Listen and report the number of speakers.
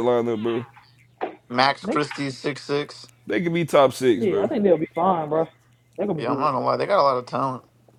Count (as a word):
three